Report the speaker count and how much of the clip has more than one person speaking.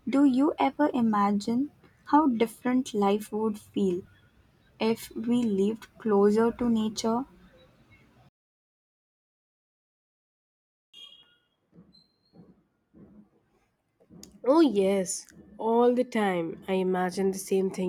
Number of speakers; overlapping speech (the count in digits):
2, no overlap